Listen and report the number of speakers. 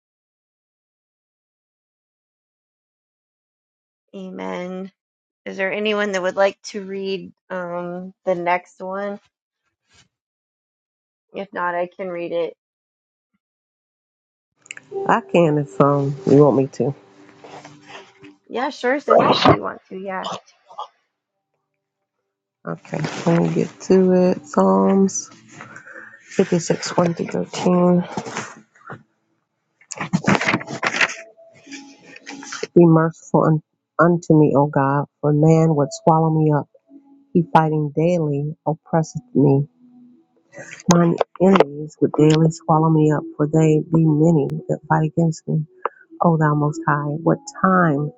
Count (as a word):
two